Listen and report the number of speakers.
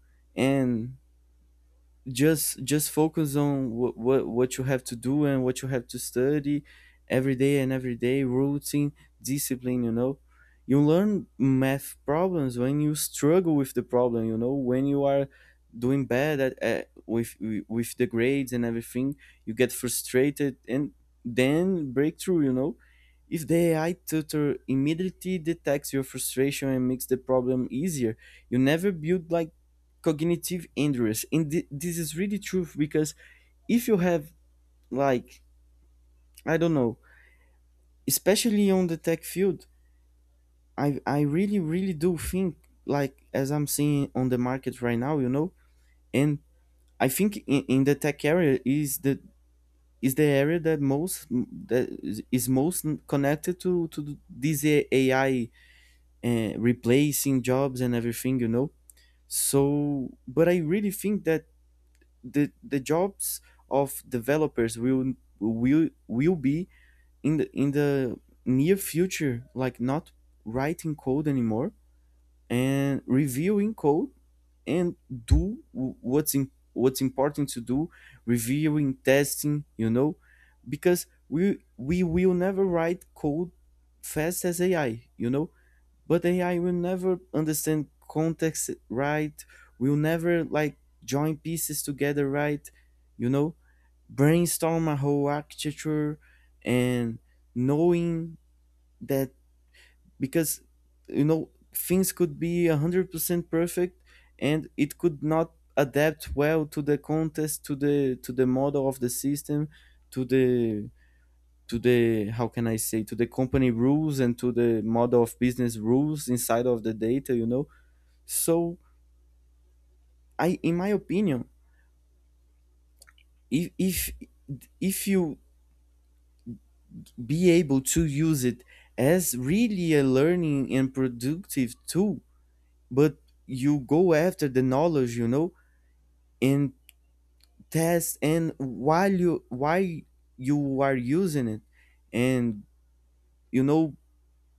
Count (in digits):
1